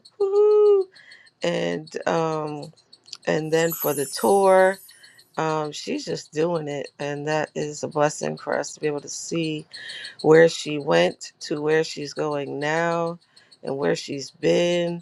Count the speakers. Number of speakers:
one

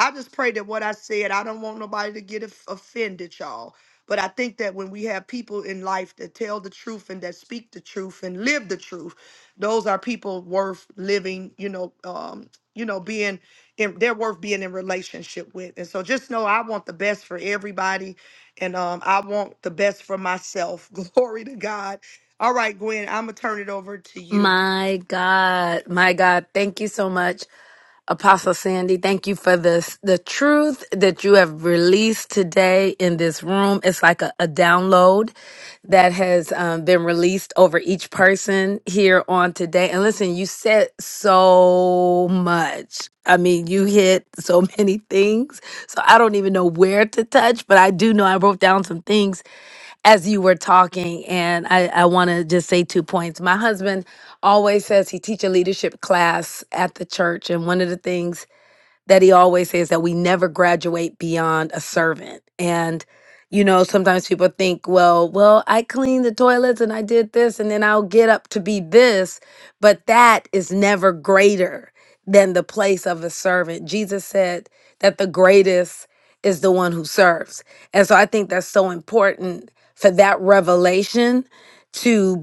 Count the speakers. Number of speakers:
two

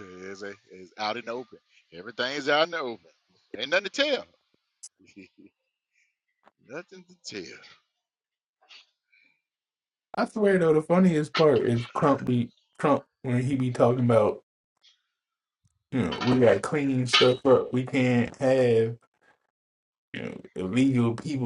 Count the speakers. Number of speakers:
two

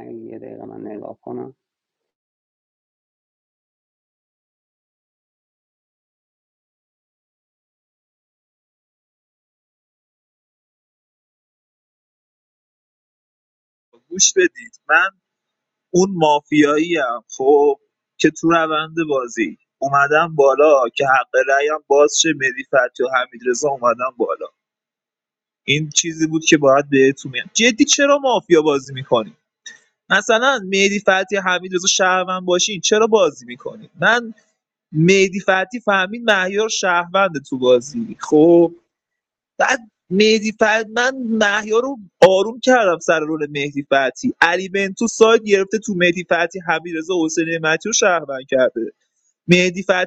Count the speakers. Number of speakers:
two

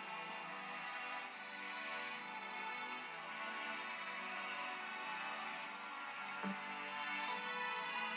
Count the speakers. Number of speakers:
zero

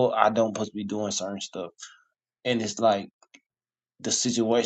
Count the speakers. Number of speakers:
one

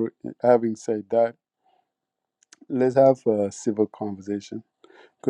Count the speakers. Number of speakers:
one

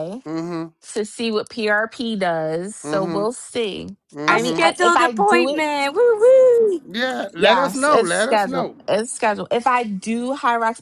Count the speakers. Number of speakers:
three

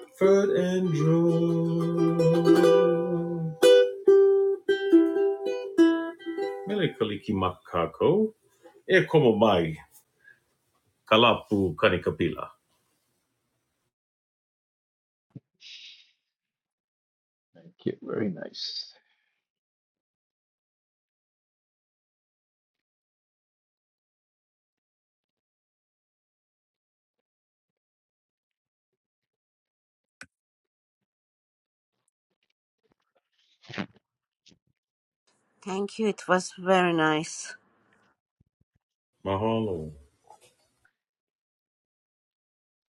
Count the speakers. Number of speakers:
three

